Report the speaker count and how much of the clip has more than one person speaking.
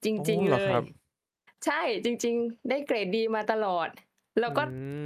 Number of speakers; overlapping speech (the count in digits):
2, about 17%